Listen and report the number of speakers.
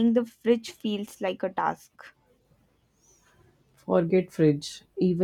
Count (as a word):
two